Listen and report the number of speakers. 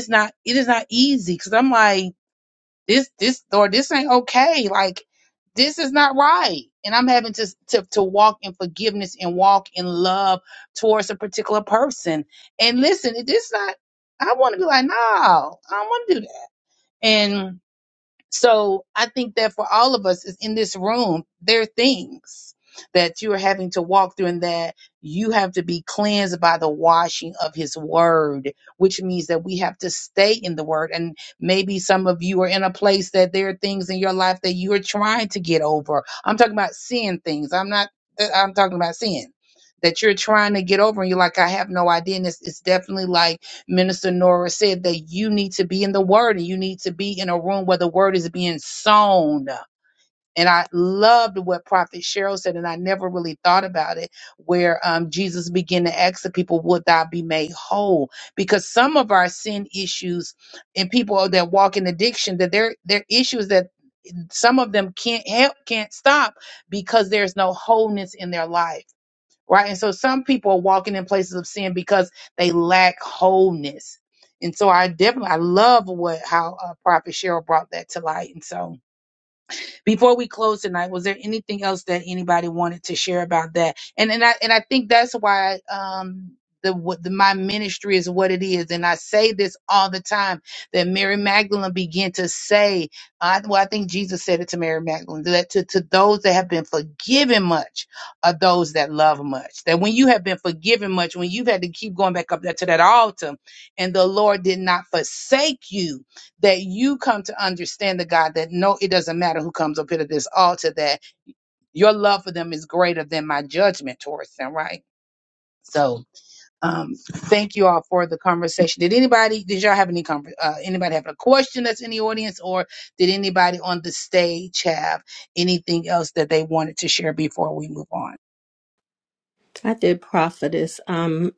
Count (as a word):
two